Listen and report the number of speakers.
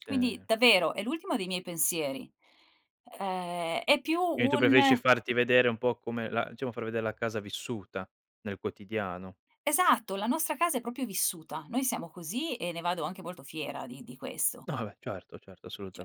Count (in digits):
2